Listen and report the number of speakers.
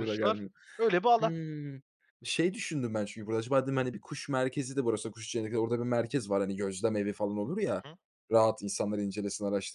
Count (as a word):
two